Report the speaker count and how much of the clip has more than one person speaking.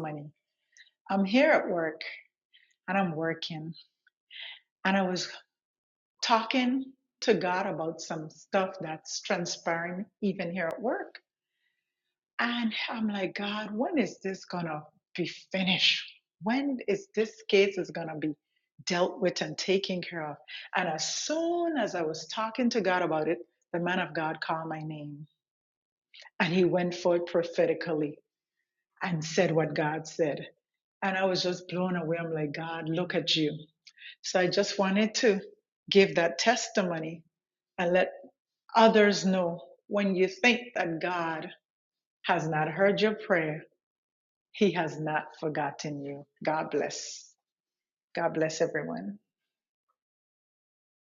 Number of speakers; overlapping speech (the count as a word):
one, no overlap